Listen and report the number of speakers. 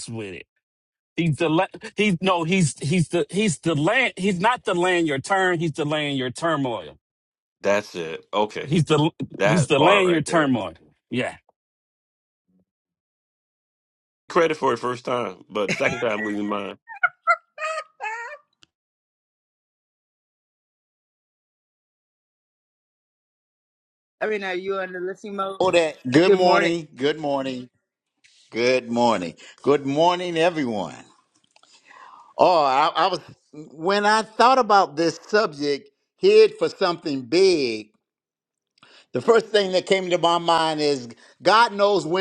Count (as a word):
four